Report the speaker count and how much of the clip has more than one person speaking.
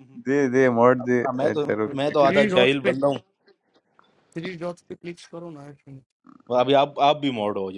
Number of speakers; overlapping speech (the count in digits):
3, about 25%